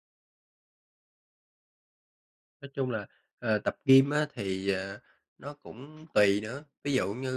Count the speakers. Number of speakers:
1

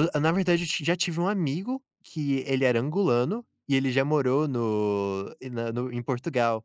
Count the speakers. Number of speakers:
1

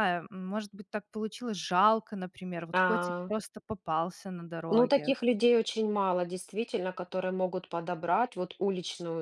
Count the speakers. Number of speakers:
2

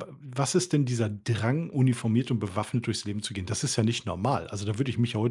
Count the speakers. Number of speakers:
1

